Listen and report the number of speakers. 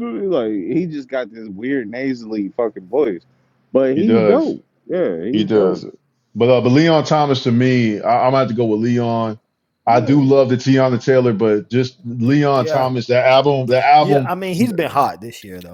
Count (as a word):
three